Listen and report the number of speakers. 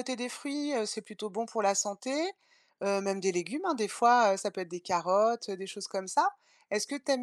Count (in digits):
1